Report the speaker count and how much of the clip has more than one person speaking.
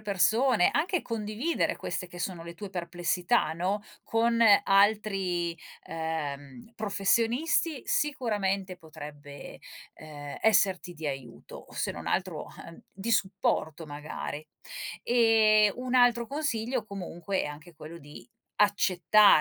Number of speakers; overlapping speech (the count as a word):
one, no overlap